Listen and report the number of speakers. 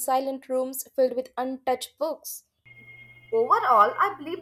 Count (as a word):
two